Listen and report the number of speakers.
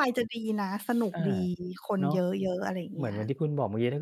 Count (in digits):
2